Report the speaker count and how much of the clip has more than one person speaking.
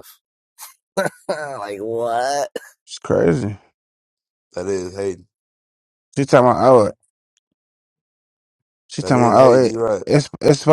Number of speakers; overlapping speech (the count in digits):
3, about 10%